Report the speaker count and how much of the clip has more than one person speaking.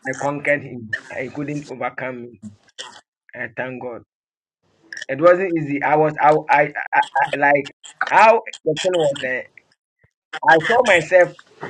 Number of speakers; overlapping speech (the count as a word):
one, no overlap